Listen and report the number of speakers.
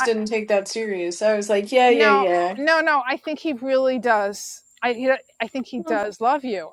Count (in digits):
2